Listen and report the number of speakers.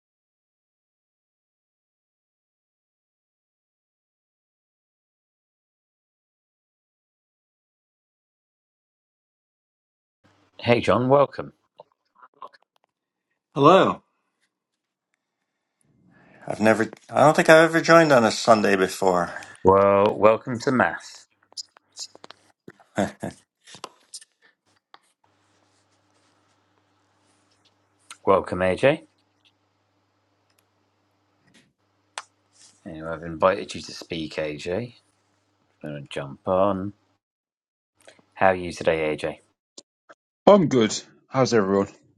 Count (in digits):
3